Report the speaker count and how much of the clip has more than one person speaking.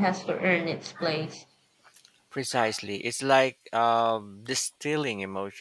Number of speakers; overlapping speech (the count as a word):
two, no overlap